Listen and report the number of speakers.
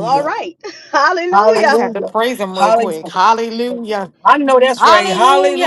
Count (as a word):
three